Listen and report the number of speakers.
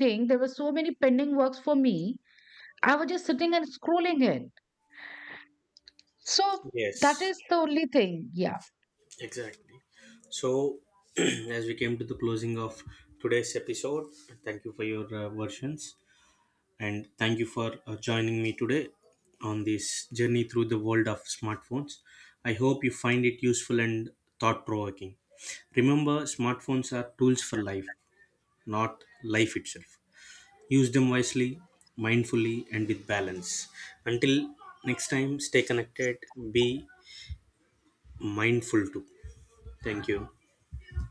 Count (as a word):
two